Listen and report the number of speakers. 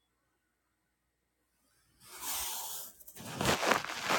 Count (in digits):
0